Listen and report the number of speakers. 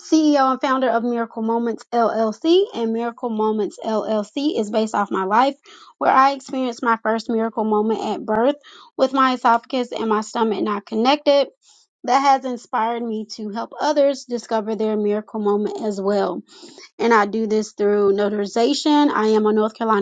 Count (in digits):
1